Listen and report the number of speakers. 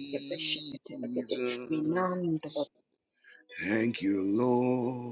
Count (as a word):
two